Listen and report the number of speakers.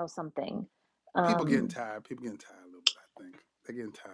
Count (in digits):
2